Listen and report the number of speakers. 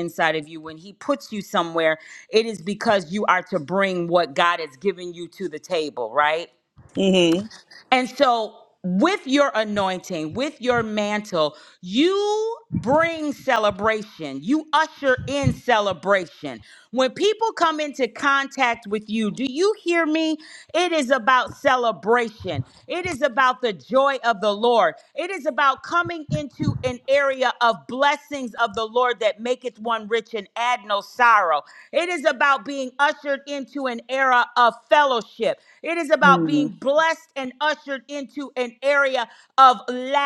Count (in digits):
2